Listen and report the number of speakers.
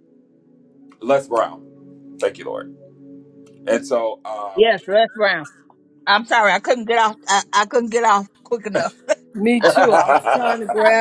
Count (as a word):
three